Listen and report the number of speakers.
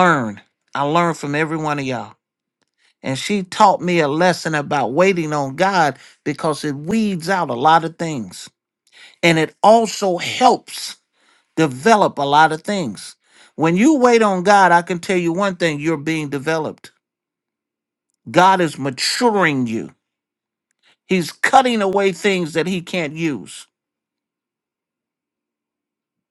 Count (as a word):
one